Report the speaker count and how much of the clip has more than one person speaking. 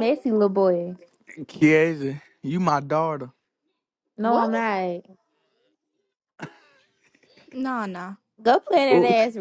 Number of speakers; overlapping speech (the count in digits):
3, about 9%